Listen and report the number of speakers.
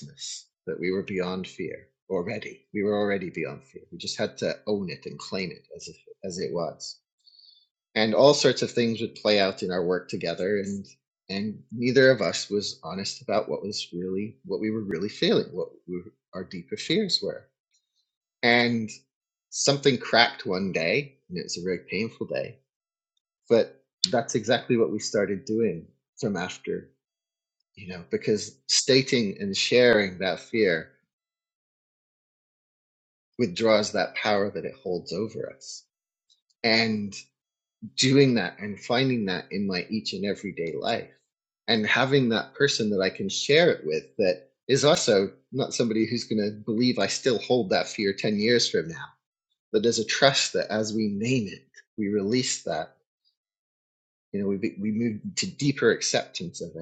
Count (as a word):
one